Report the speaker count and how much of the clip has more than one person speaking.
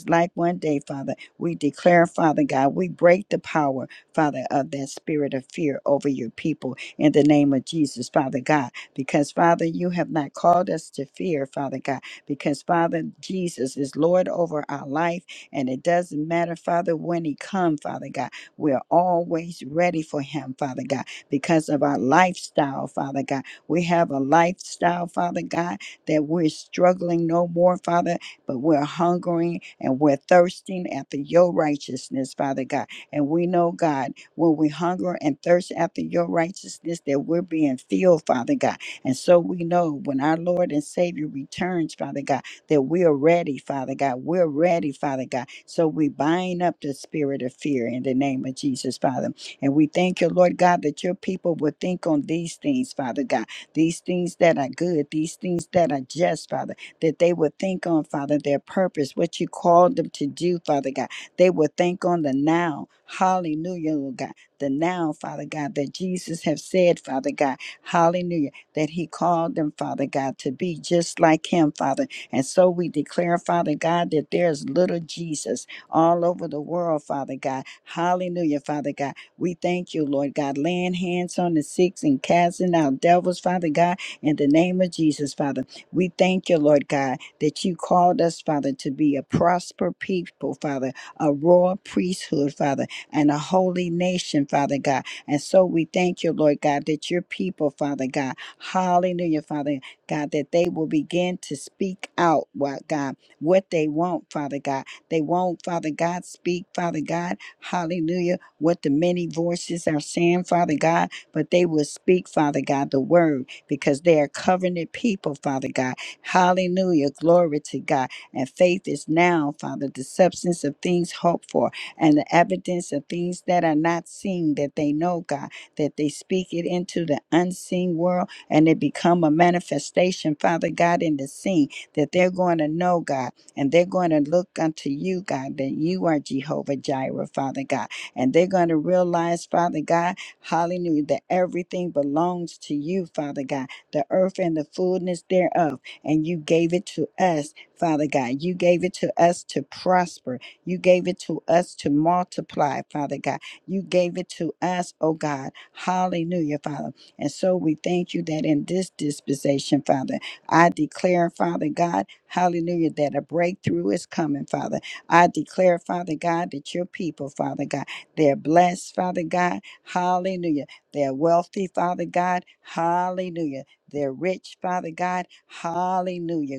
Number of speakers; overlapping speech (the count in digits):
1, no overlap